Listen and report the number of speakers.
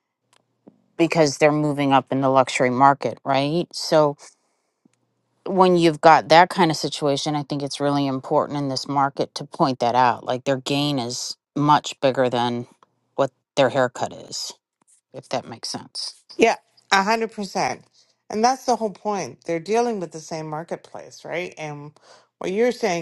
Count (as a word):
two